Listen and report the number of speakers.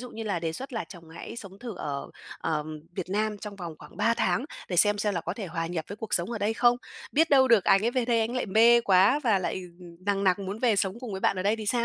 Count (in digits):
1